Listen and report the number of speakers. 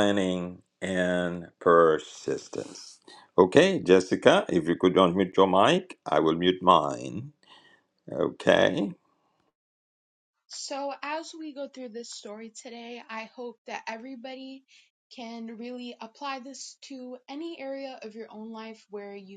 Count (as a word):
two